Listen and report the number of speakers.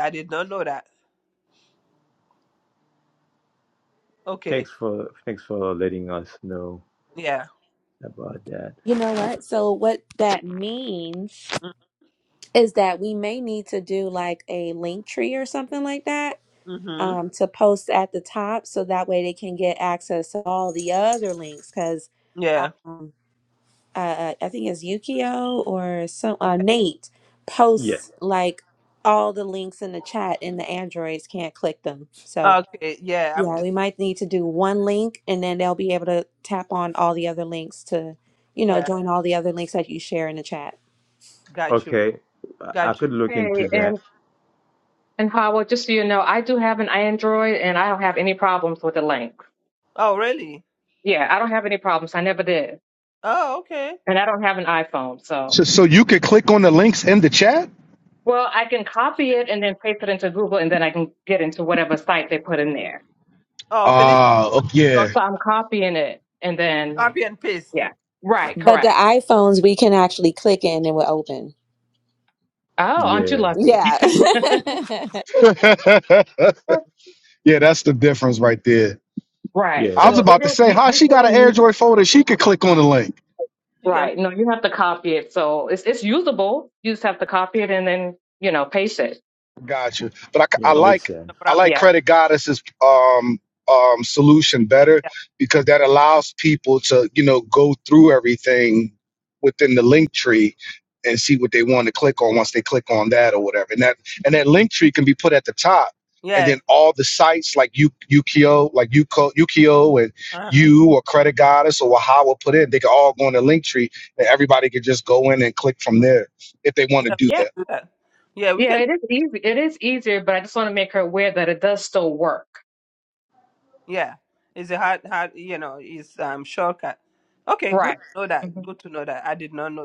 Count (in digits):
5